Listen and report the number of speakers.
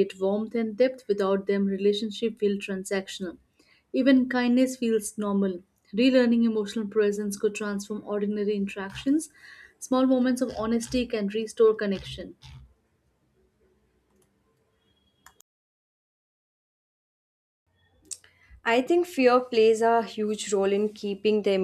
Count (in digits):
2